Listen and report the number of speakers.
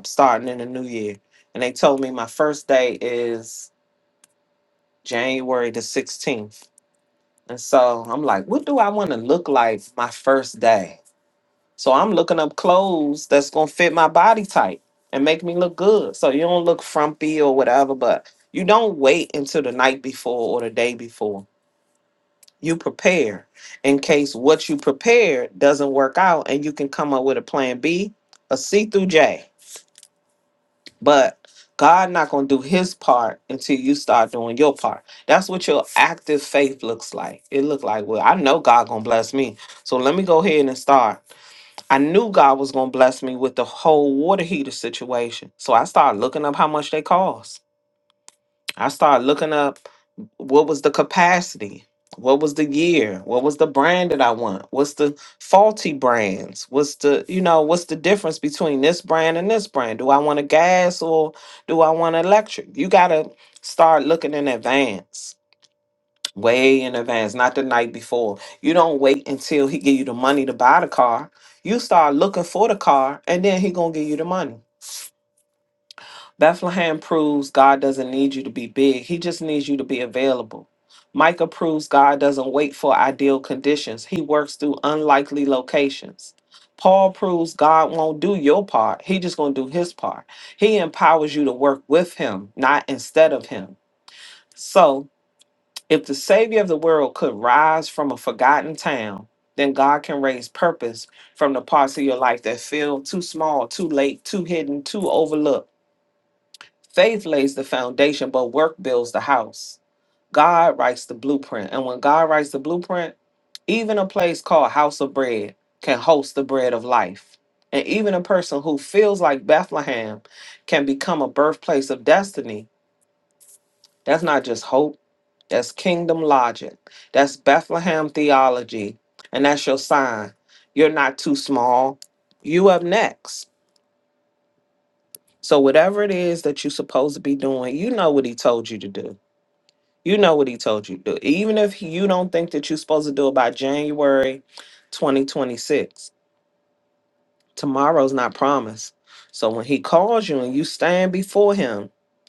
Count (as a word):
one